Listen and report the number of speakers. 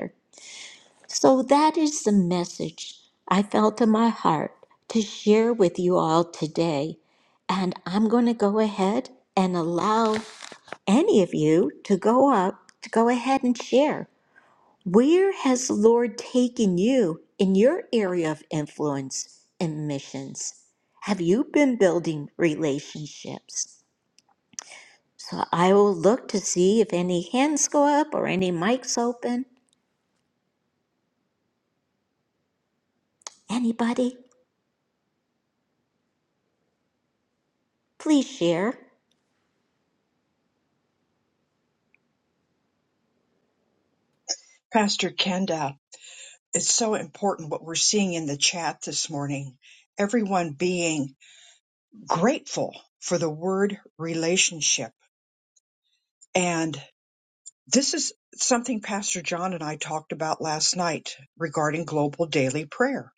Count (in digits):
2